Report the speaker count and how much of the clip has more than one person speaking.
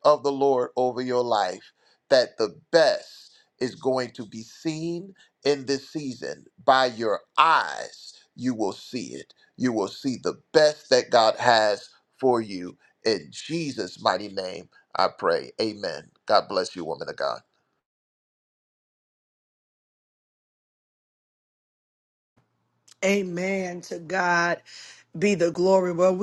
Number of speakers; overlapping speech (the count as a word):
two, no overlap